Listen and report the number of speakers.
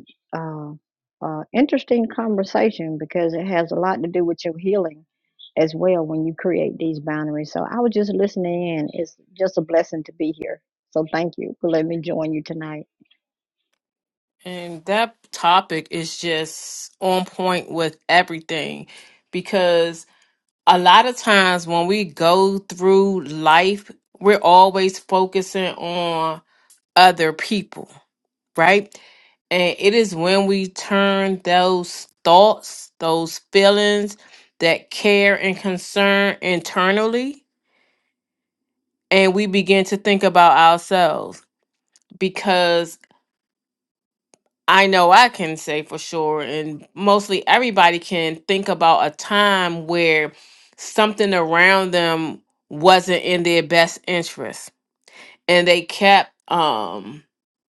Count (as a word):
two